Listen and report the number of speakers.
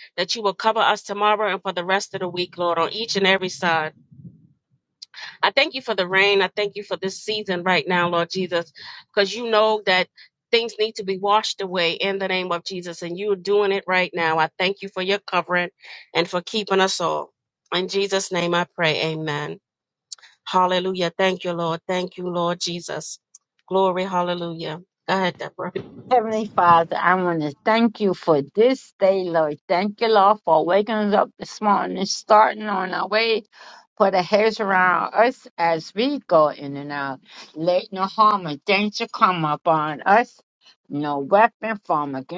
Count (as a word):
two